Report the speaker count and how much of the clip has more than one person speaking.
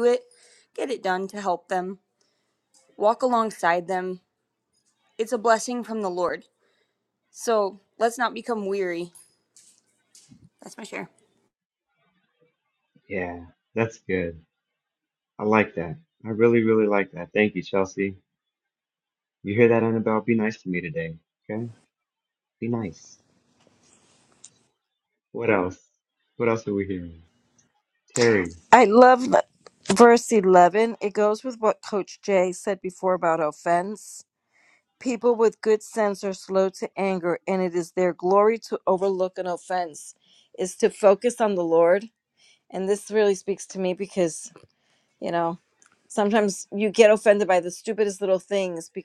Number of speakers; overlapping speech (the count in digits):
3, no overlap